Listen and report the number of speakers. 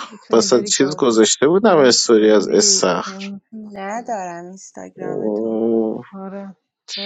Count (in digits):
3